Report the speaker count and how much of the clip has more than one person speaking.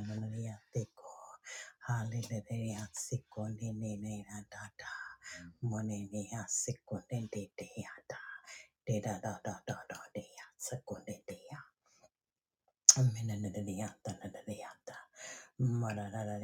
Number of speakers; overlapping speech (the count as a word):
one, no overlap